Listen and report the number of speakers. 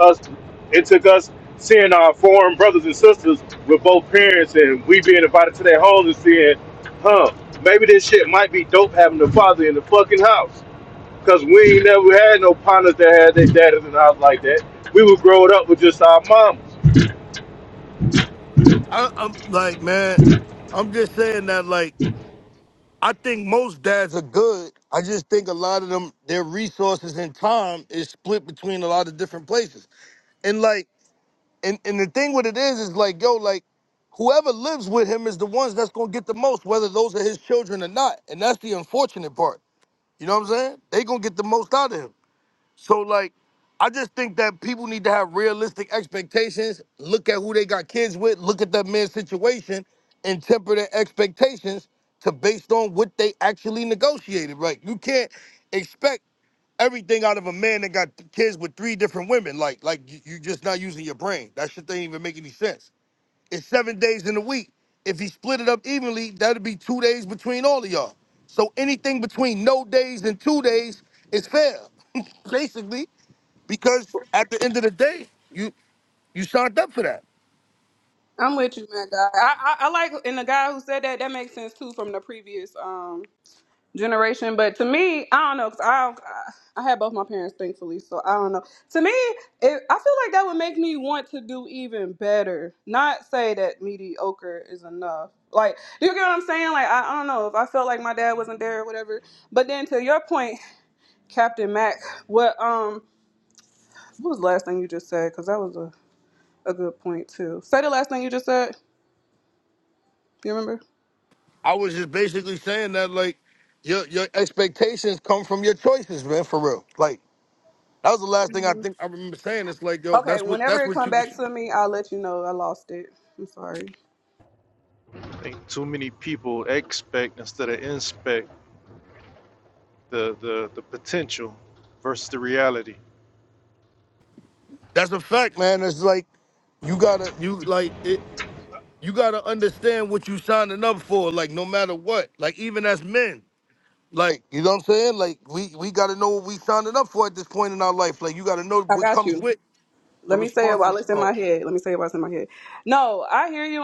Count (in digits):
4